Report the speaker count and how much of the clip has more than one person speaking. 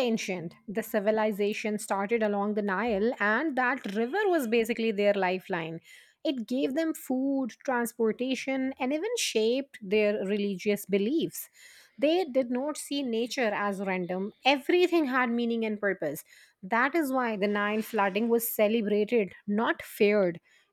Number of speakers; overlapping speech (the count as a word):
one, no overlap